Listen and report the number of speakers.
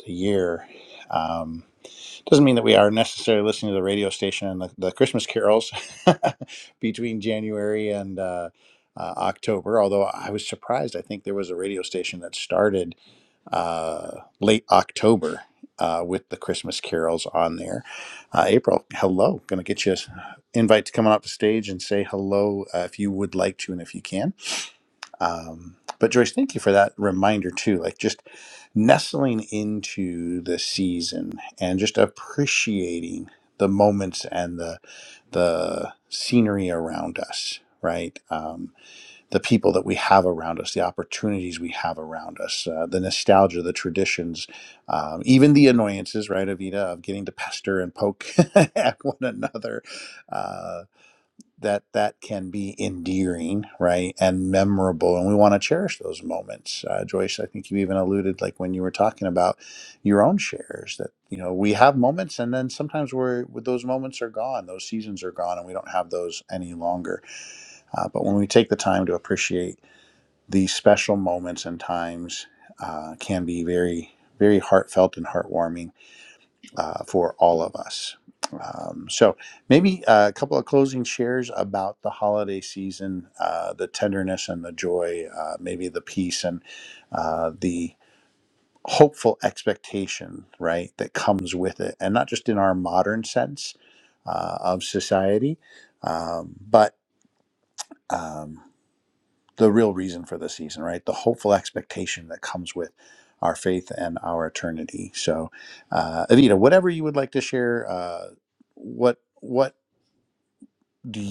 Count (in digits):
1